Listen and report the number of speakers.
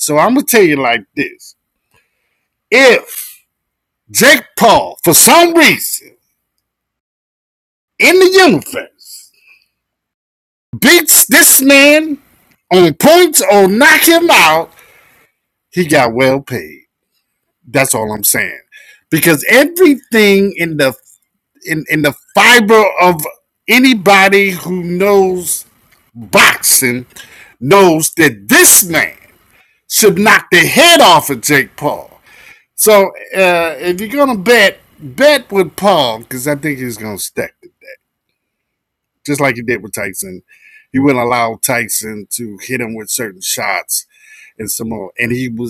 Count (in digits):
1